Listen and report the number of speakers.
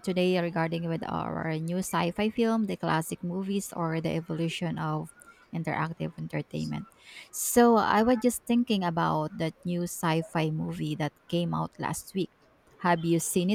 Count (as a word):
one